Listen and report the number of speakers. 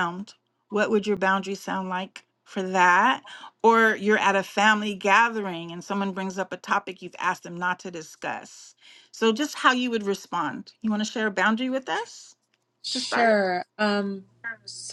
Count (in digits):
2